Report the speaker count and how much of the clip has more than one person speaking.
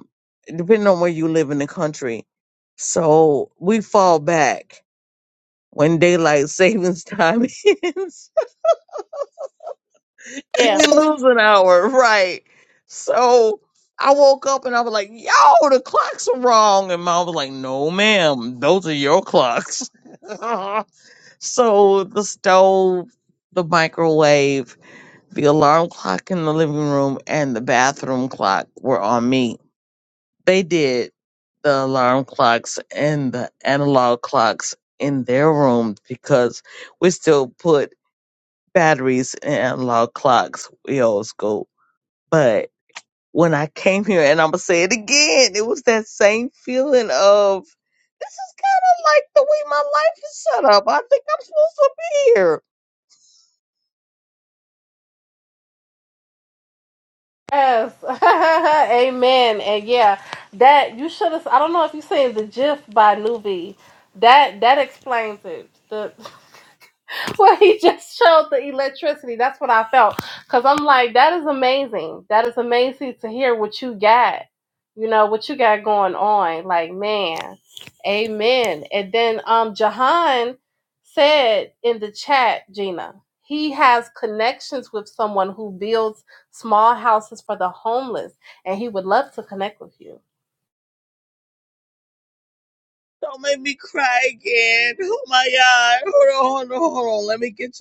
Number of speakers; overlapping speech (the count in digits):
2, under 1%